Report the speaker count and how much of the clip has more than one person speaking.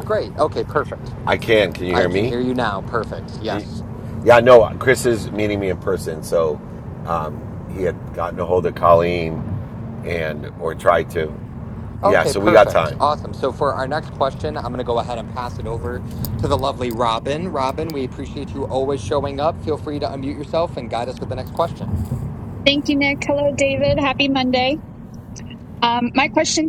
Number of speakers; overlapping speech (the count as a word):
three, about 7%